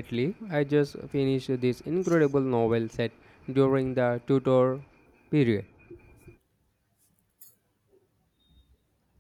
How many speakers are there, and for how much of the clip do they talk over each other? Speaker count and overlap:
one, no overlap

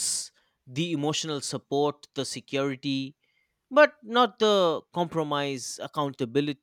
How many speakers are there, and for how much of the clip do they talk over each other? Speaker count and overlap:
one, no overlap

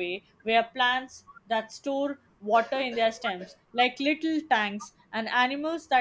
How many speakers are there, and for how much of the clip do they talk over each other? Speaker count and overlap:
one, no overlap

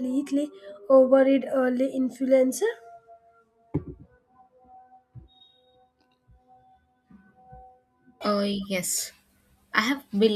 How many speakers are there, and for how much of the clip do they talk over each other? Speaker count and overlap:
two, no overlap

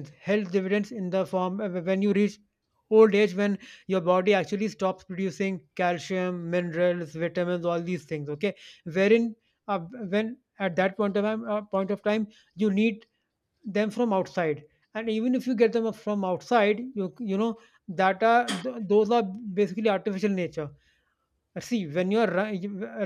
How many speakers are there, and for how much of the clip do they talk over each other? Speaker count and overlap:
one, no overlap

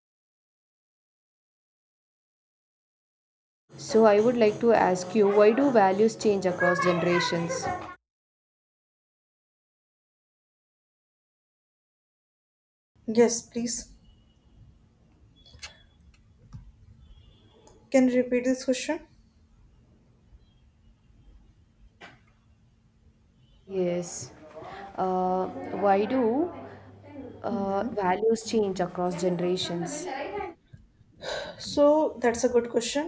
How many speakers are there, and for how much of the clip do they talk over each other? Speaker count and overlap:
two, about 1%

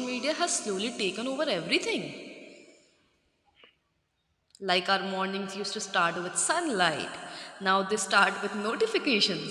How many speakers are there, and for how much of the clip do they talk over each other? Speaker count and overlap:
one, no overlap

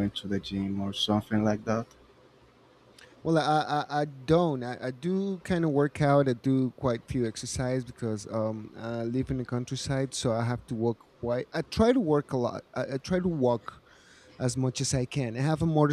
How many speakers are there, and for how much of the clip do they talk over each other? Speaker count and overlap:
two, no overlap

